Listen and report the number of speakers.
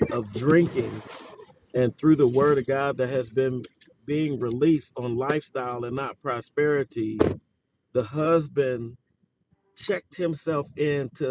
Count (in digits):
1